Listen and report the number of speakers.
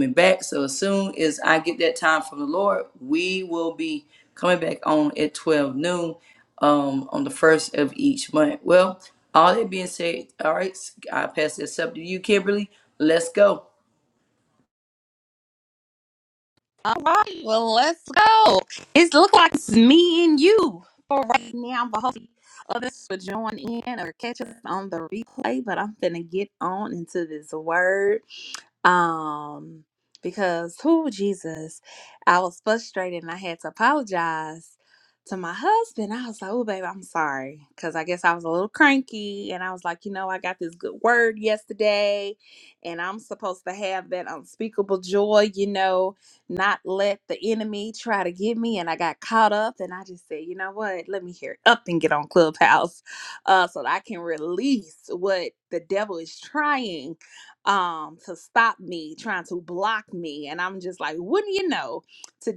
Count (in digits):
2